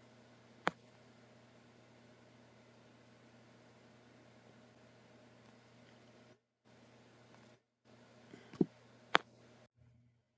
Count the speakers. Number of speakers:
0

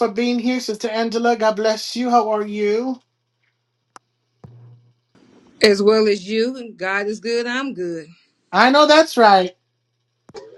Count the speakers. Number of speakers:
2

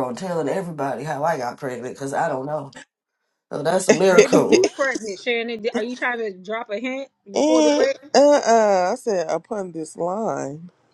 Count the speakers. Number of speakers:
3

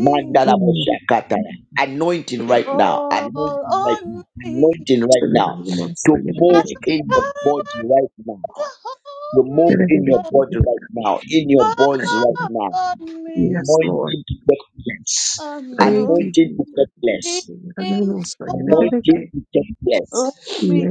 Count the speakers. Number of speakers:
3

